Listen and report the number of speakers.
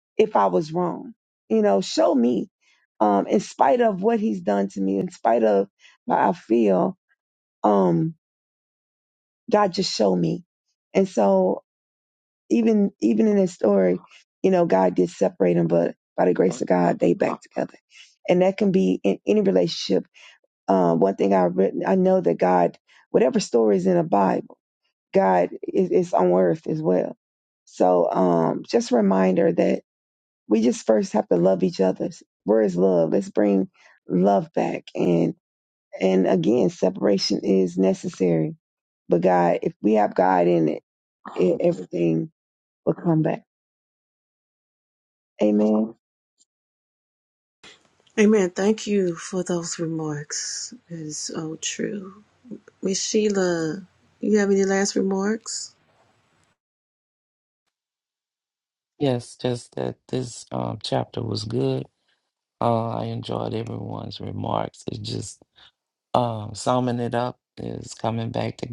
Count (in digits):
3